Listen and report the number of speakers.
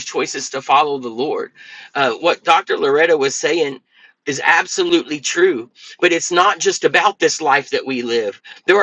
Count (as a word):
one